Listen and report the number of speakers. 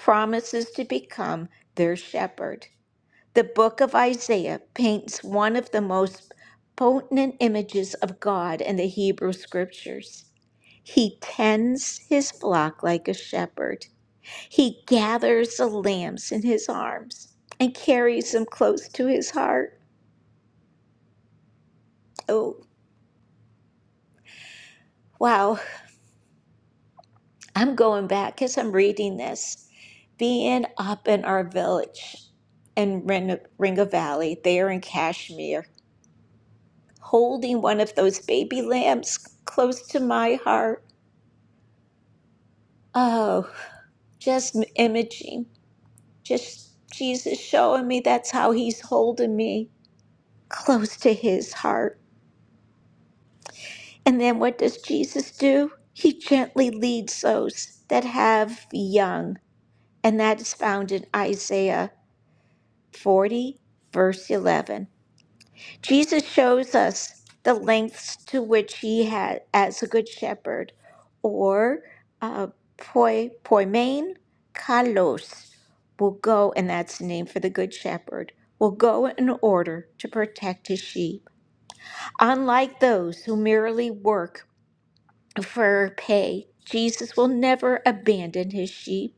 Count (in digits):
1